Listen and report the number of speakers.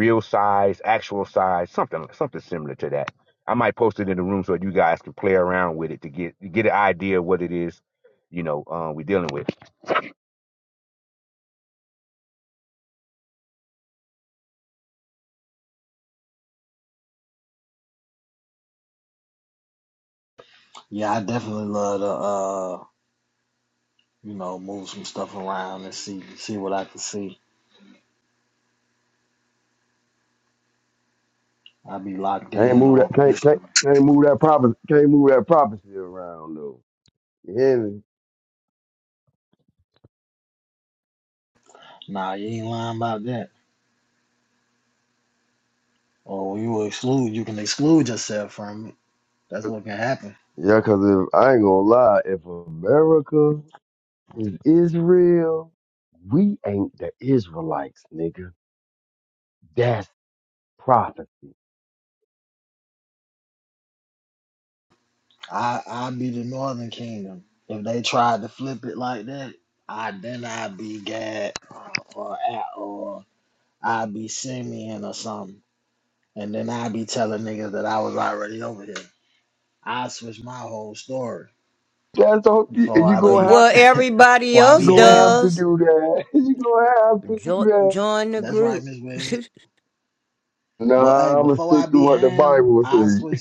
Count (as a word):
four